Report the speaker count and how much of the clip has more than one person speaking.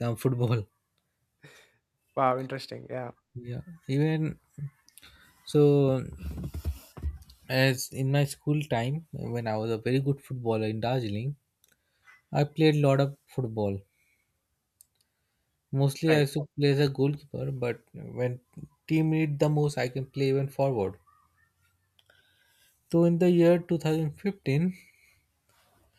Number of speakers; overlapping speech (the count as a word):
two, about 1%